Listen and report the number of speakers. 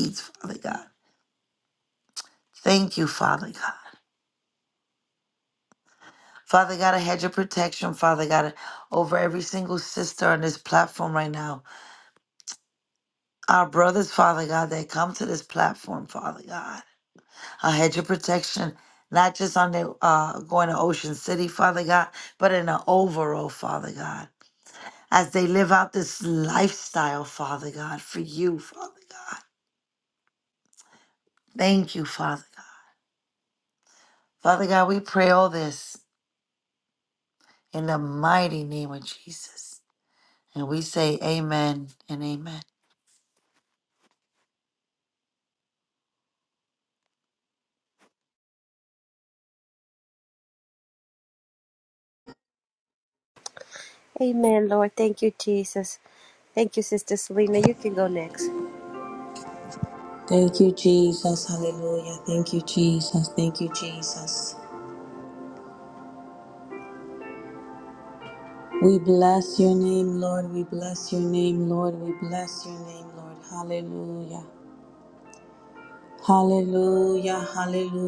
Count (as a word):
three